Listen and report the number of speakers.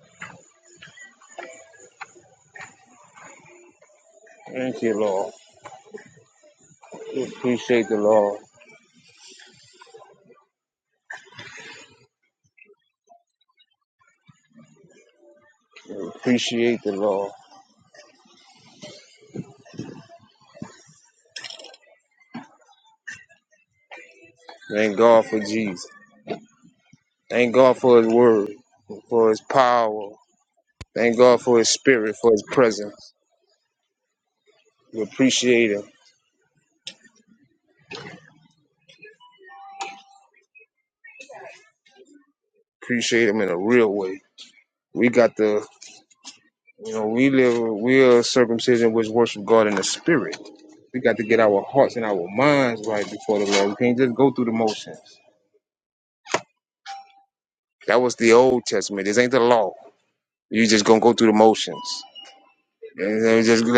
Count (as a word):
one